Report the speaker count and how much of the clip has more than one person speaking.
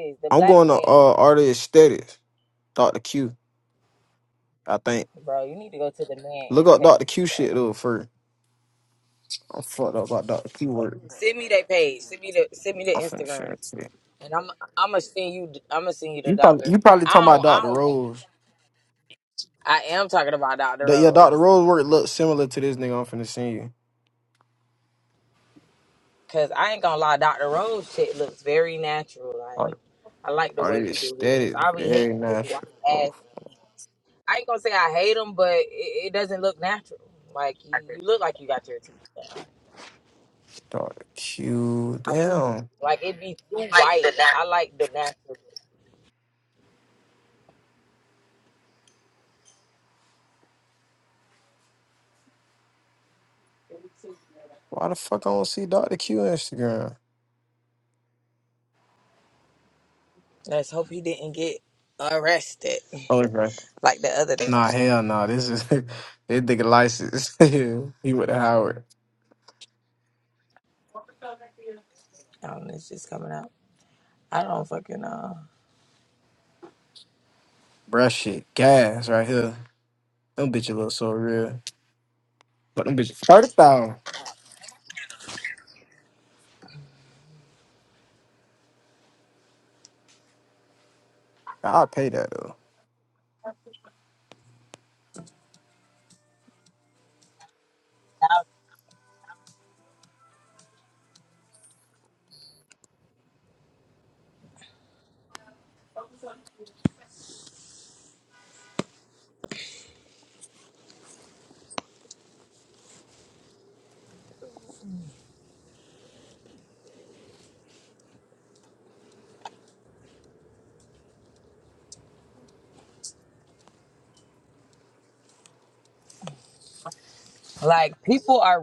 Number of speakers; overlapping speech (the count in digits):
2, about 6%